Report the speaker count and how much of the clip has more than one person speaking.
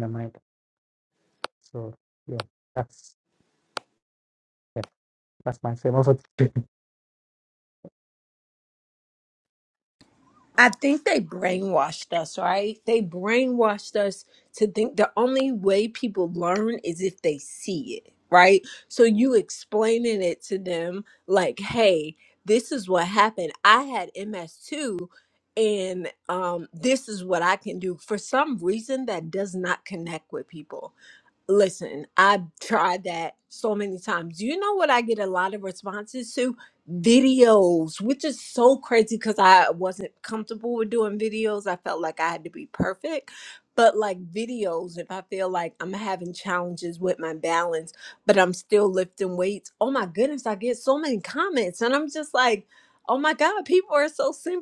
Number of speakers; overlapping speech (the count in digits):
2, no overlap